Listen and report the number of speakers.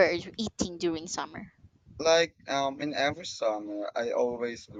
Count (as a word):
two